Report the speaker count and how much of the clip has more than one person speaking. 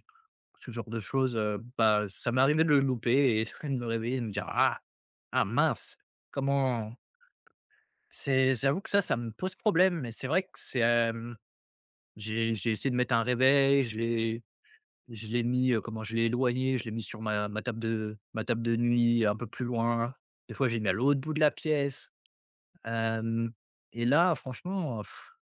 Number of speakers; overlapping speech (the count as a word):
one, no overlap